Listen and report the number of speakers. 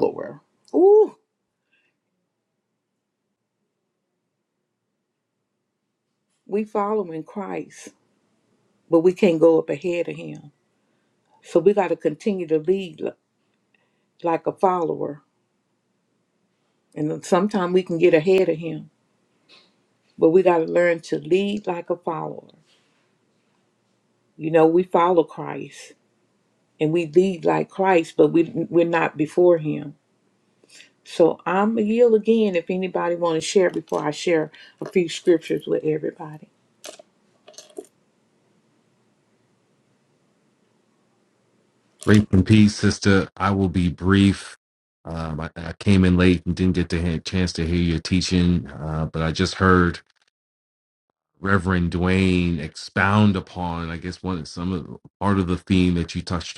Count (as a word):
two